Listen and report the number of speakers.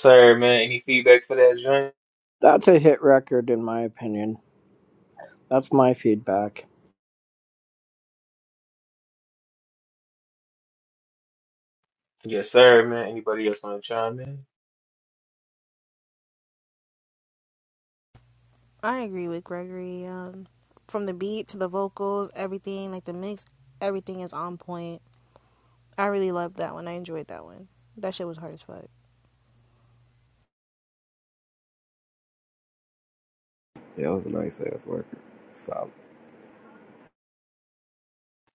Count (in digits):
4